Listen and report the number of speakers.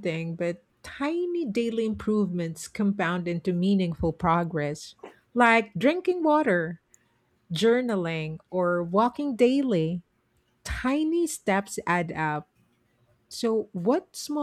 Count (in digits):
1